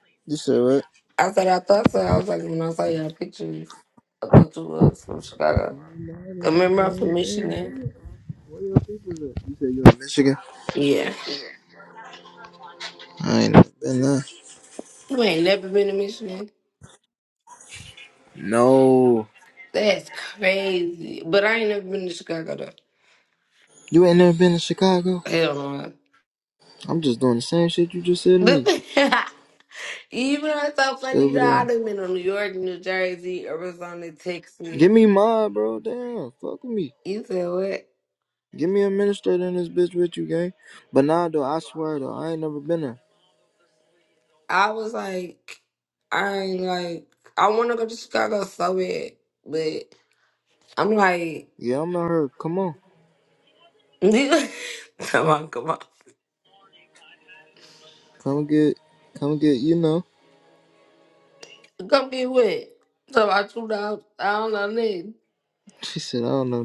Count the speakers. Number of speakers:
2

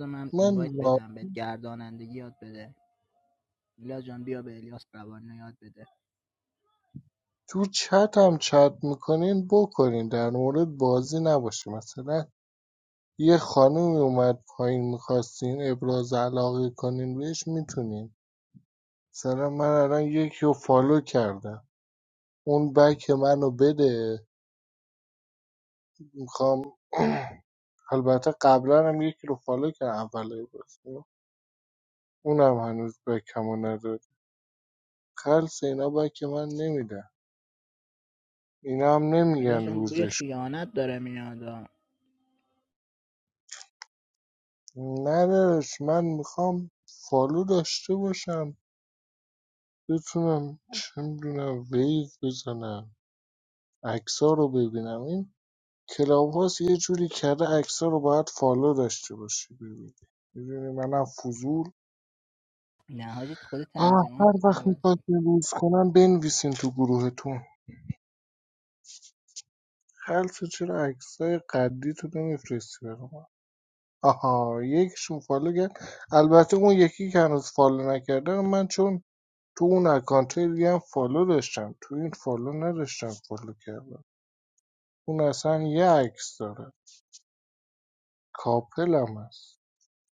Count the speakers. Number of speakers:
2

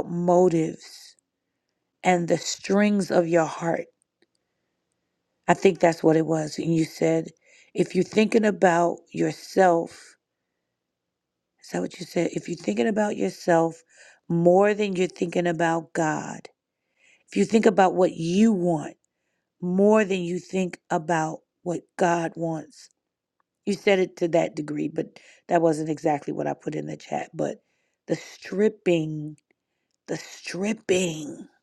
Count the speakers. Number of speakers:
1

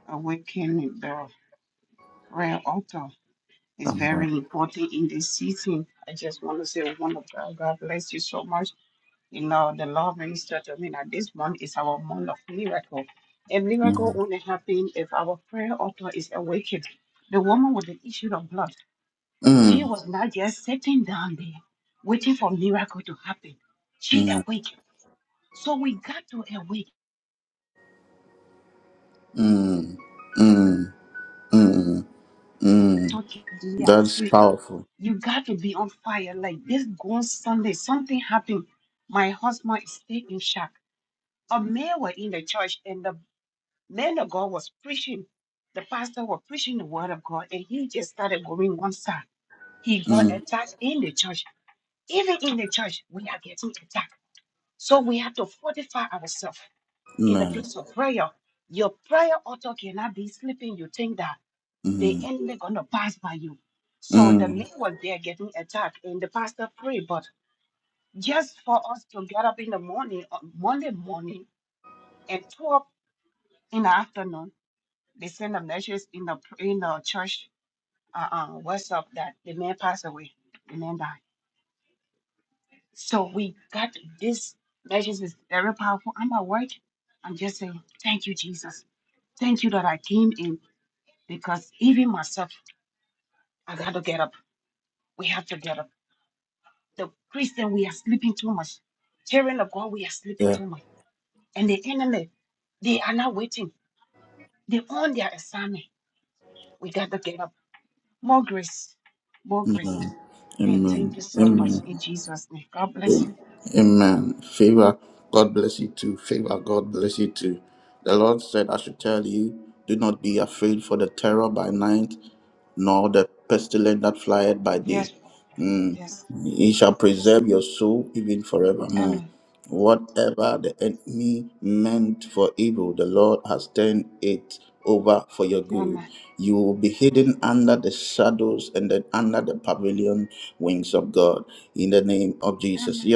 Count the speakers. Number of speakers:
2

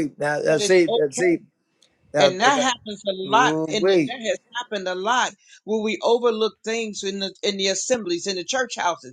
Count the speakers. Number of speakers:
2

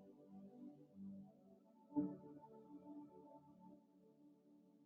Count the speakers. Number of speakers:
0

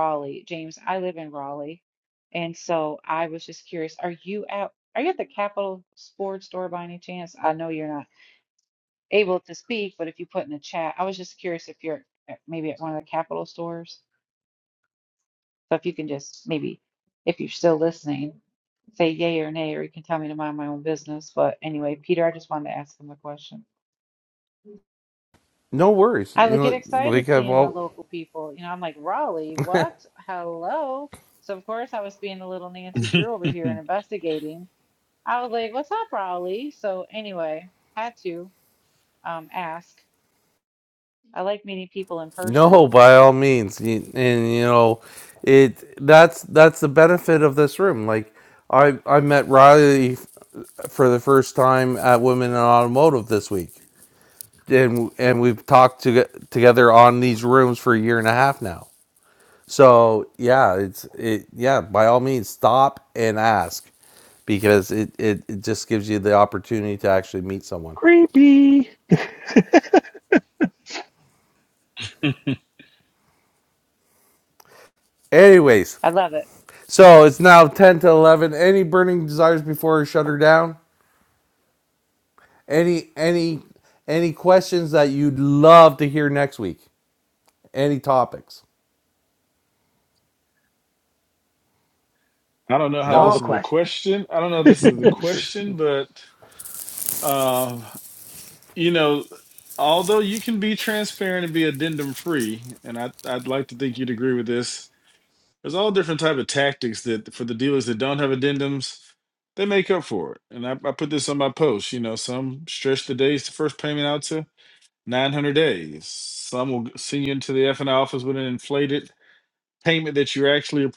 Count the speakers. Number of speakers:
4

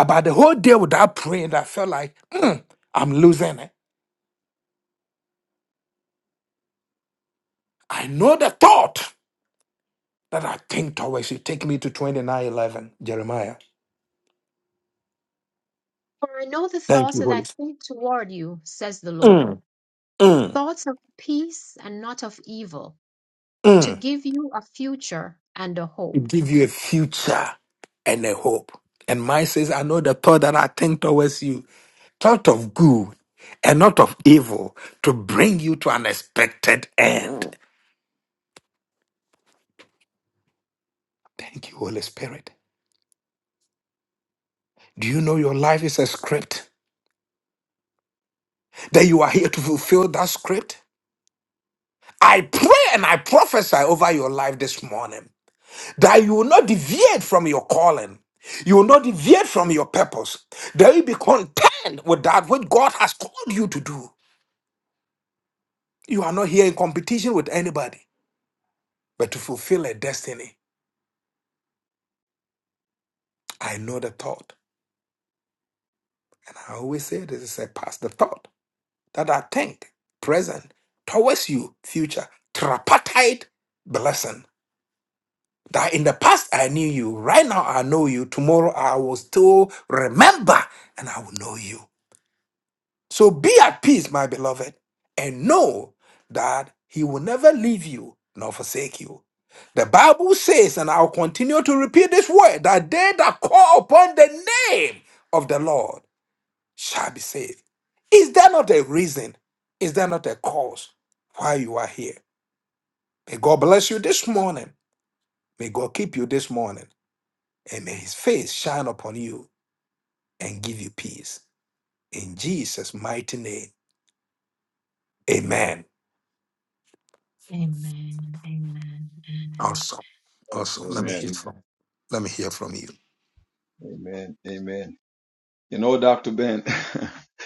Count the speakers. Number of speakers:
3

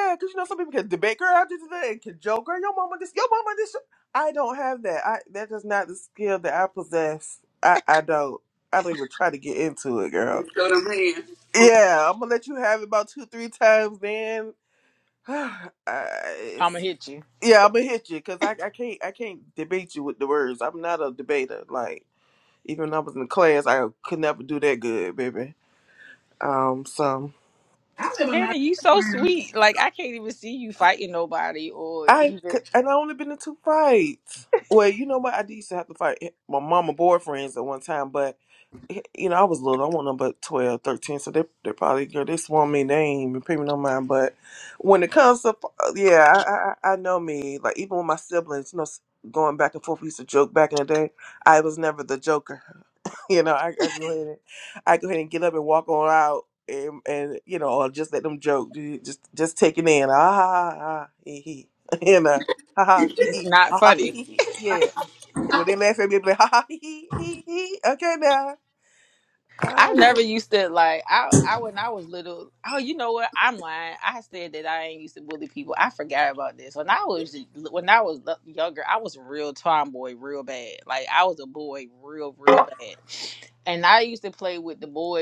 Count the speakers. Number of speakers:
3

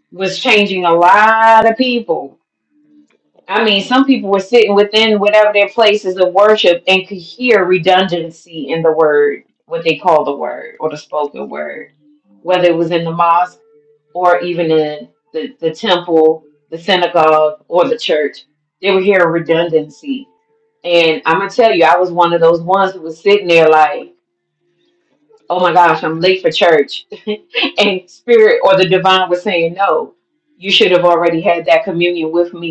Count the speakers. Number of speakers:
1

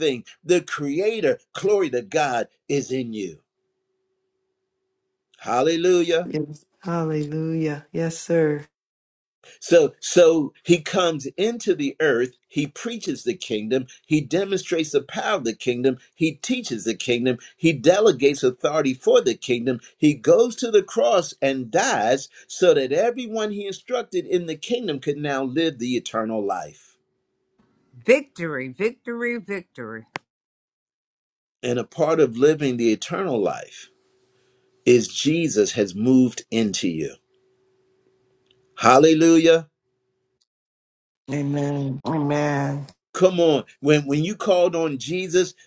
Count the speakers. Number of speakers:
4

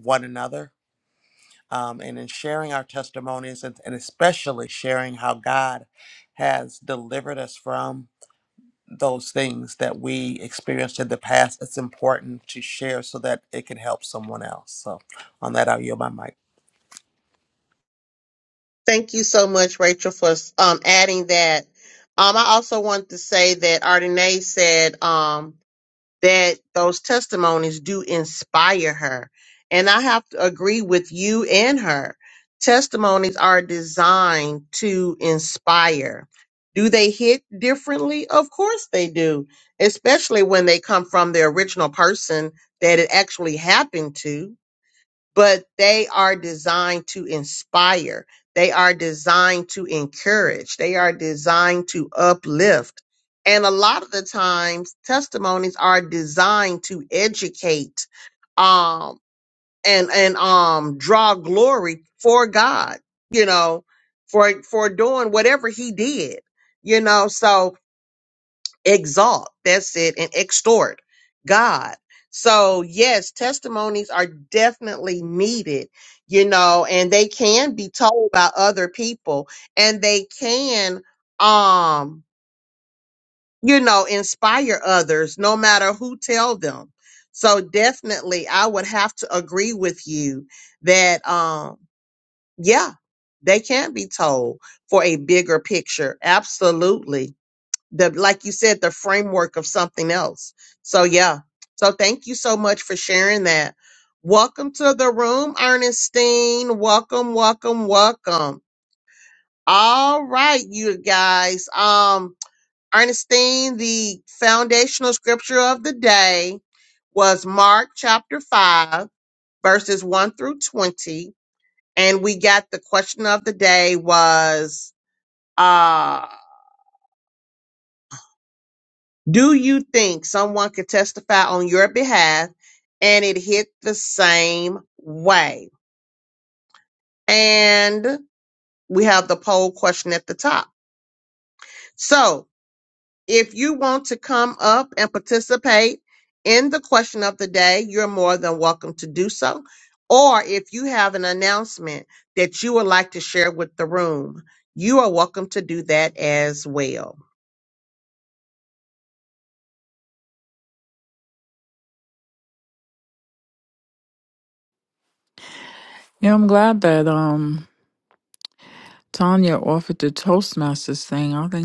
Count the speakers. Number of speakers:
3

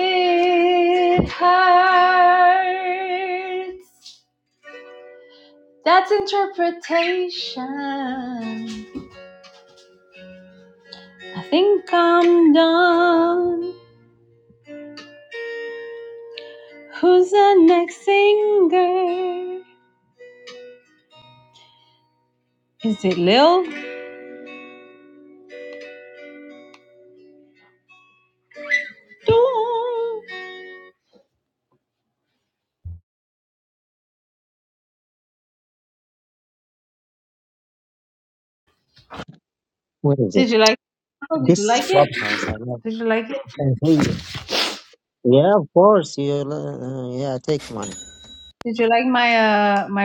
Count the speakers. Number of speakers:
2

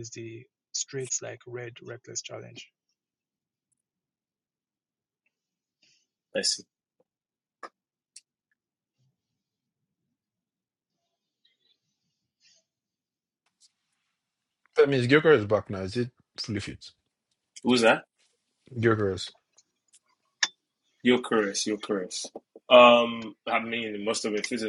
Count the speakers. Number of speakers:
3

